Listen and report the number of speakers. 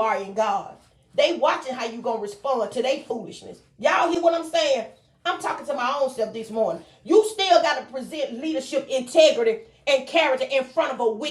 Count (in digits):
1